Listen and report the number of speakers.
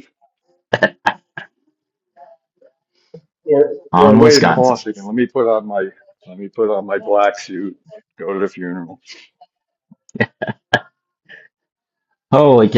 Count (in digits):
2